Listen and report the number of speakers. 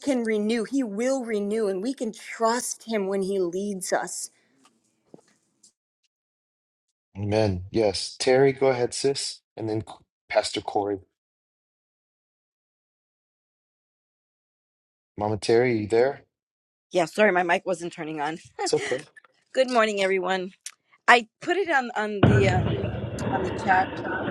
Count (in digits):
3